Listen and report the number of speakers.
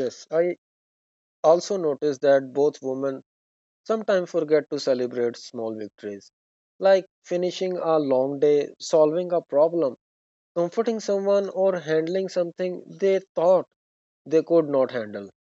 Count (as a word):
one